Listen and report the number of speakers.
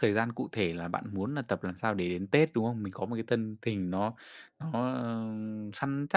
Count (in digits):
1